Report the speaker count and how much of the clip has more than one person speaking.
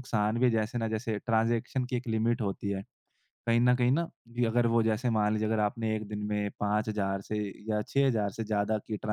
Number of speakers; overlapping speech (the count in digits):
1, no overlap